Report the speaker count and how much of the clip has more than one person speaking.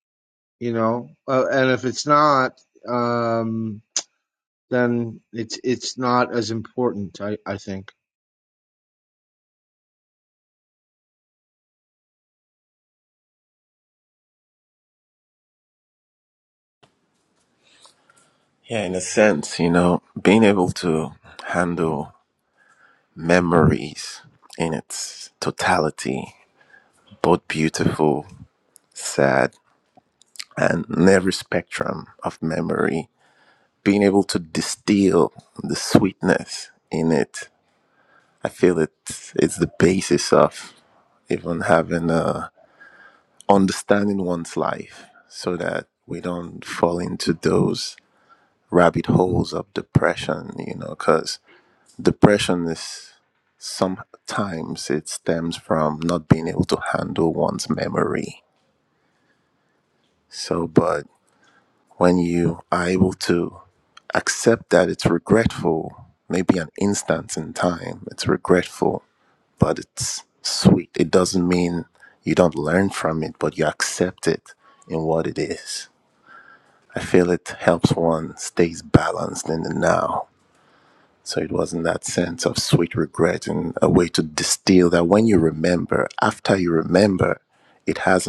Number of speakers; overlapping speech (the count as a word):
two, no overlap